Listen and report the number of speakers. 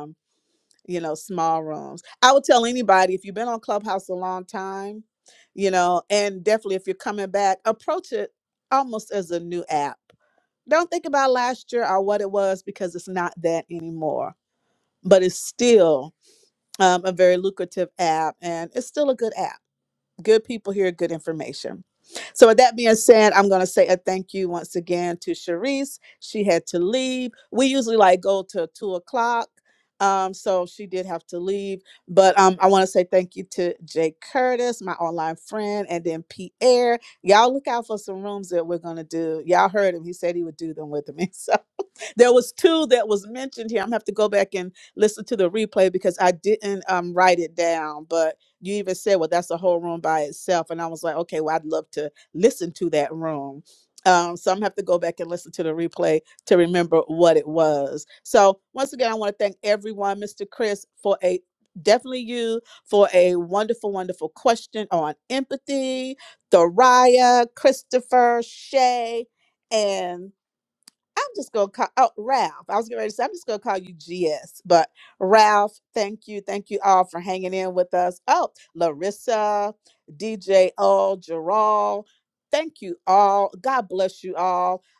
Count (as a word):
one